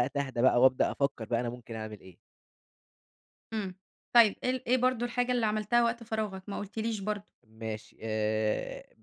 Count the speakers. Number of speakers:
2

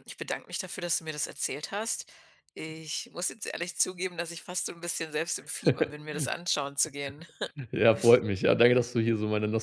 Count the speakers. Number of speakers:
2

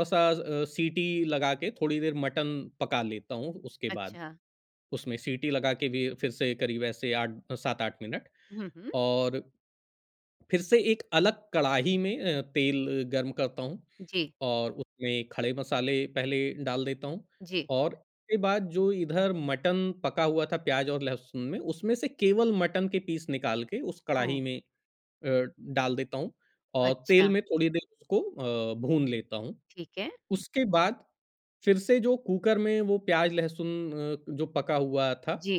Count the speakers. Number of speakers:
2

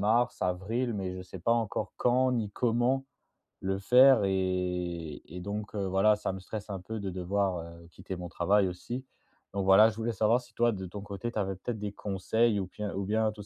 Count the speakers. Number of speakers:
1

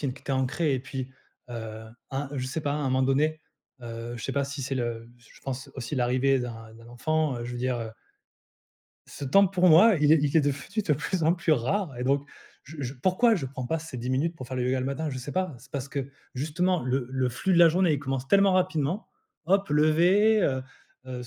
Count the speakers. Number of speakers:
1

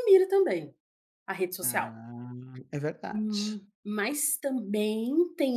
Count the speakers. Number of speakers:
2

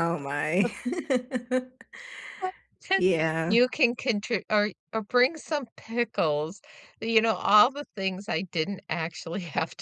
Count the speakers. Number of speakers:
2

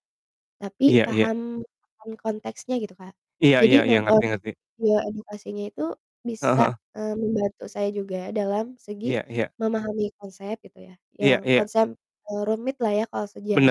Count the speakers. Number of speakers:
2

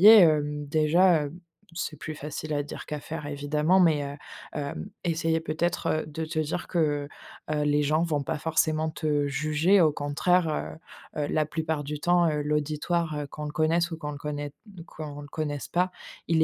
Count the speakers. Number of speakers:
1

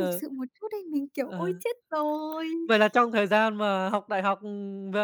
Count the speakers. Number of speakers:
2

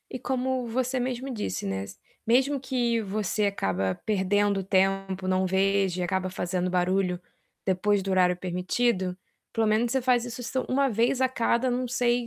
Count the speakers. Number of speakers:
1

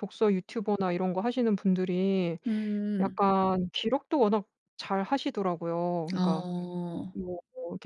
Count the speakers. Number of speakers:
2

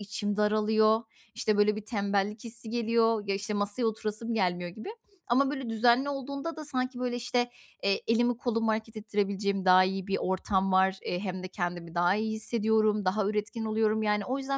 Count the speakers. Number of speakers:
1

